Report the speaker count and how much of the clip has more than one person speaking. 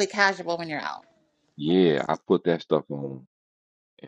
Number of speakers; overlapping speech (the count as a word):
two, no overlap